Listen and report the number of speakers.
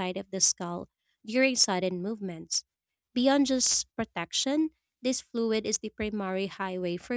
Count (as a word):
one